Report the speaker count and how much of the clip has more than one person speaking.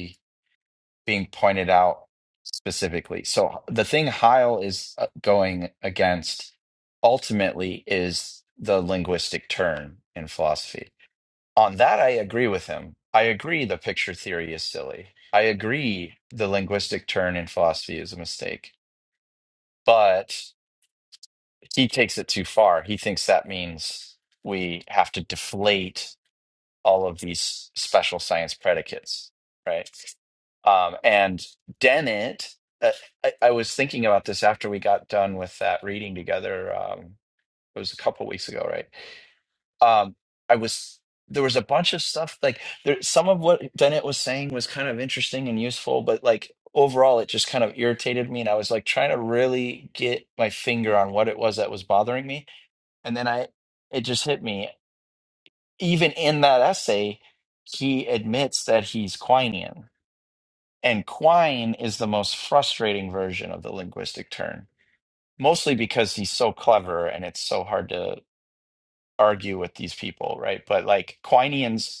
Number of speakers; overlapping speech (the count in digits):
1, no overlap